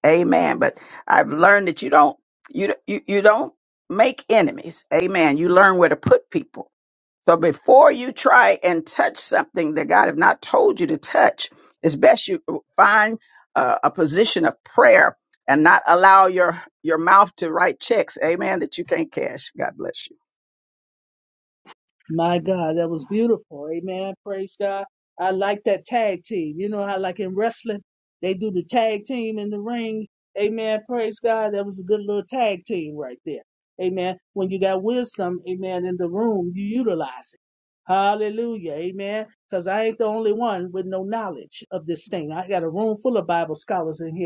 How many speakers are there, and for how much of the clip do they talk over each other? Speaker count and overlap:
2, no overlap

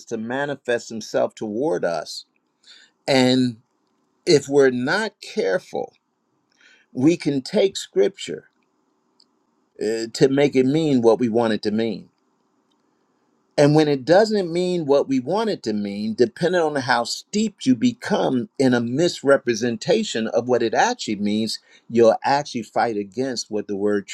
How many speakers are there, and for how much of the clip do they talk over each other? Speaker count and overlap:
1, no overlap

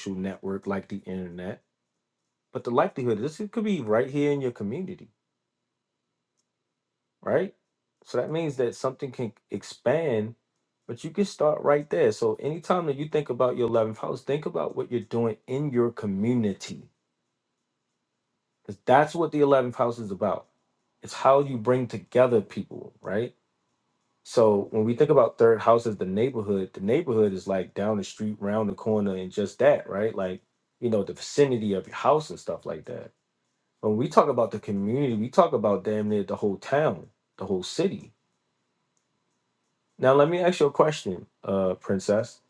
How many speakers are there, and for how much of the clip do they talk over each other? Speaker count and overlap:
1, no overlap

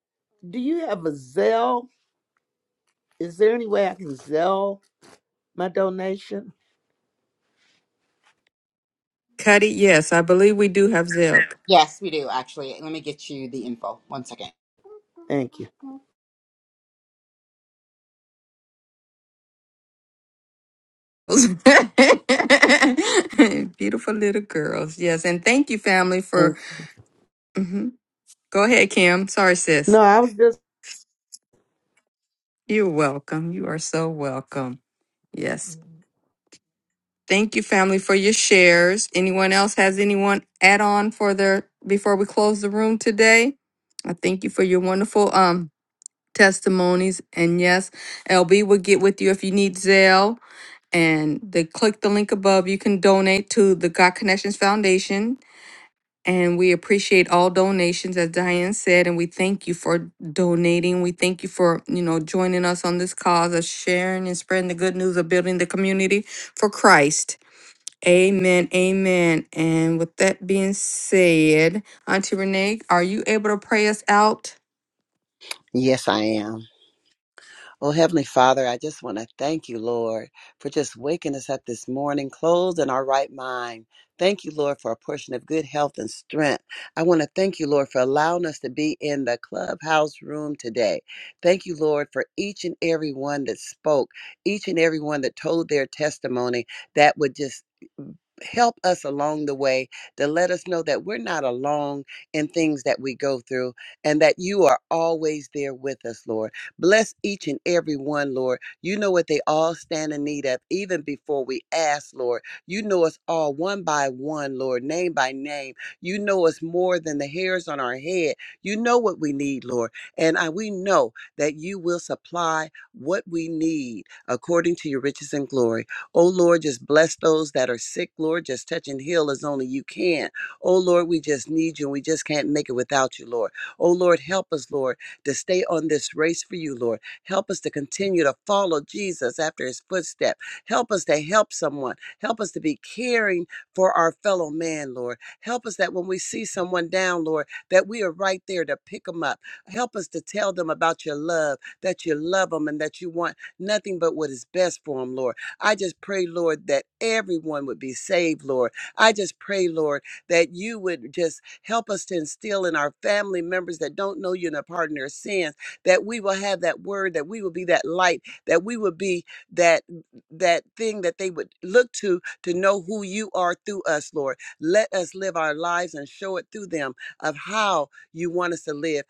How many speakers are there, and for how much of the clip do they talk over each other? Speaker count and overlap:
4, no overlap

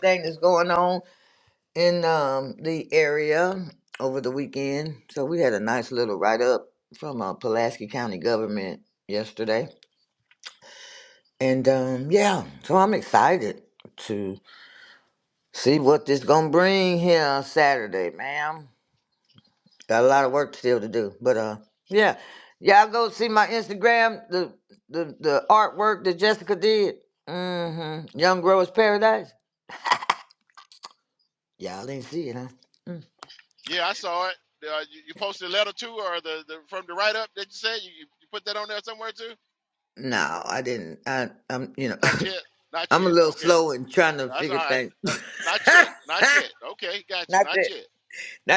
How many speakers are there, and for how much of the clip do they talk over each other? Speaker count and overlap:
2, about 3%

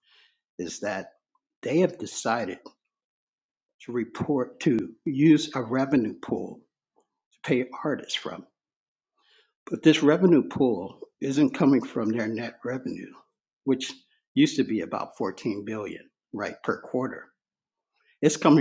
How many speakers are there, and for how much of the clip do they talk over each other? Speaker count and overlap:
1, no overlap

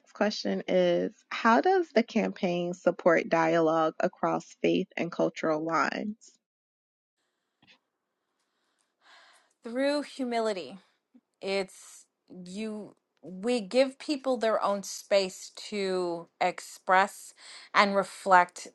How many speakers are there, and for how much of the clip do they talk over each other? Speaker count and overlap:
2, no overlap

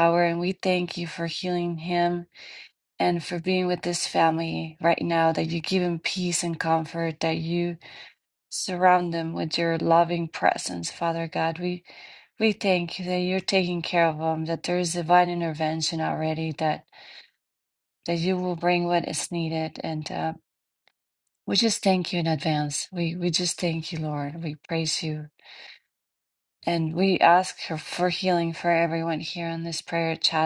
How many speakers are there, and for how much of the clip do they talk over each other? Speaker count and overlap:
1, no overlap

